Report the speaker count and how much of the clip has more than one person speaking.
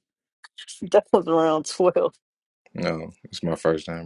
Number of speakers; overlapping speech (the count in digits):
2, no overlap